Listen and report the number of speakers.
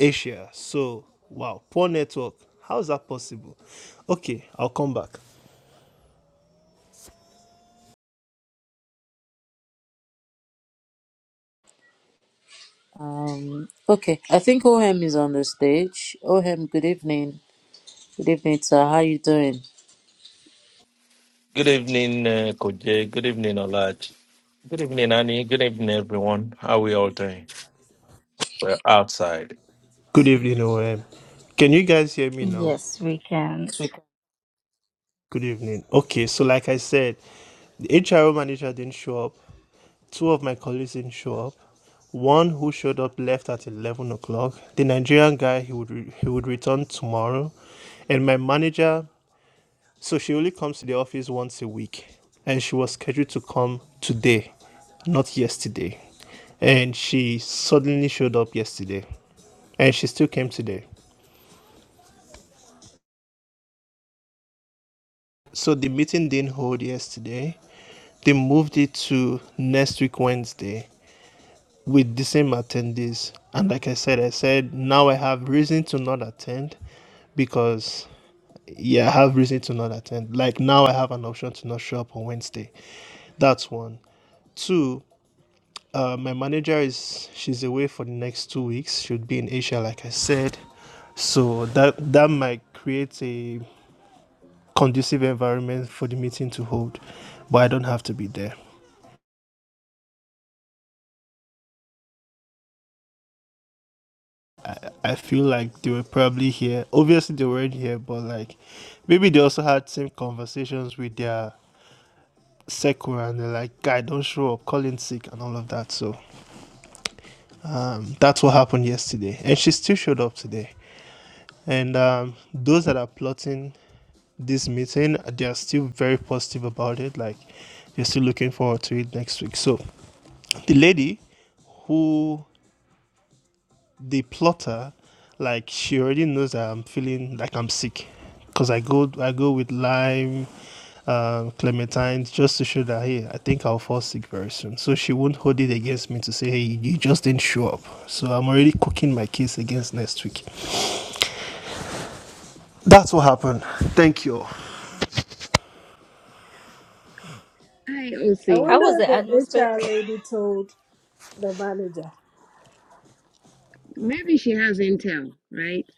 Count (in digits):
6